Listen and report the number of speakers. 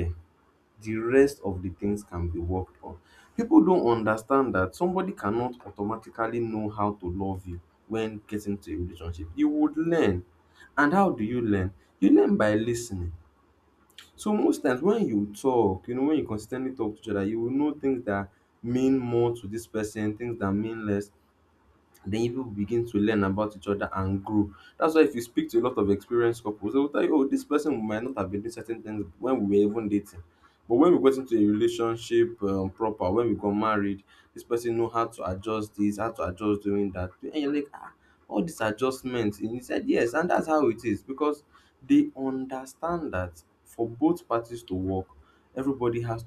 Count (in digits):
1